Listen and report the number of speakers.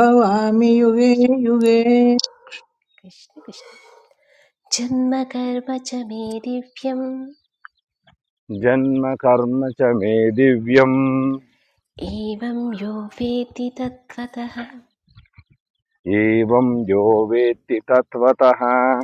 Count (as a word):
three